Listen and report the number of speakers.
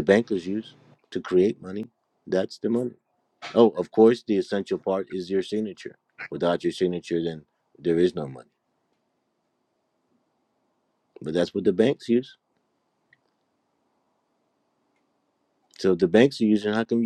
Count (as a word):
one